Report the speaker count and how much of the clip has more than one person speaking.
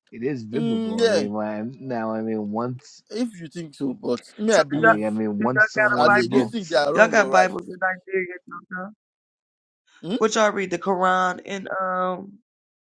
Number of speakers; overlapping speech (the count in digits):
3, about 24%